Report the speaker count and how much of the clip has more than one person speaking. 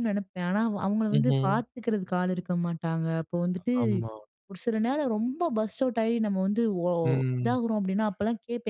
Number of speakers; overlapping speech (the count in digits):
2, about 6%